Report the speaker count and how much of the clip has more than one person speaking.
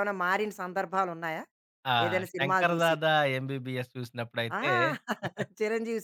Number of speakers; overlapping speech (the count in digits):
2, about 19%